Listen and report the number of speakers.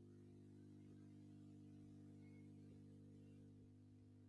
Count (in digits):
0